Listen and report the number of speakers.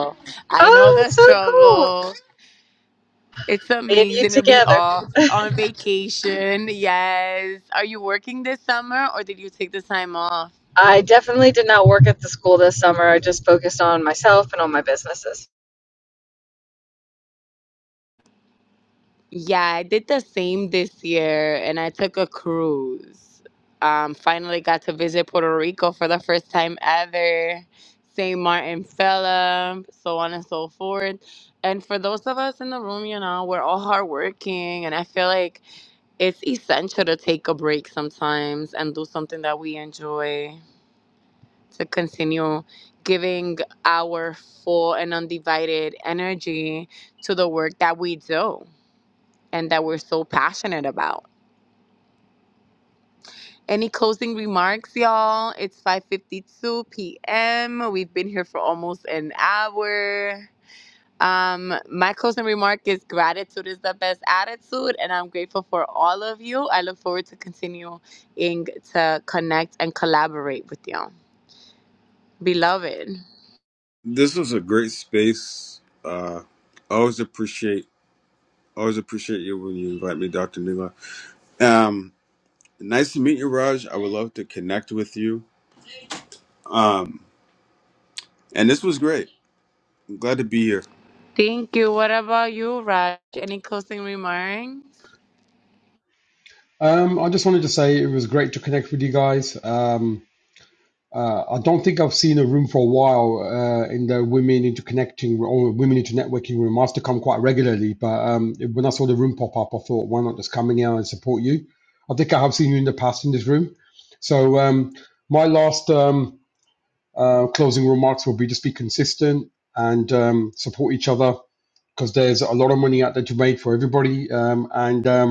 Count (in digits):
4